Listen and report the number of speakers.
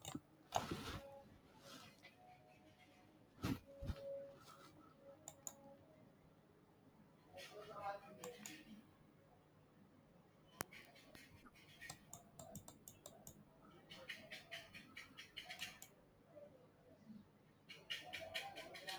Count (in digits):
0